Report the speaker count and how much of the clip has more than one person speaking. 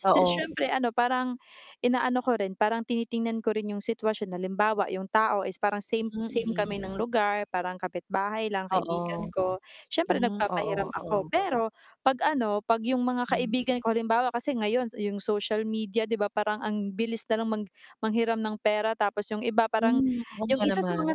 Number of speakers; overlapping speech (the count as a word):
two, about 16%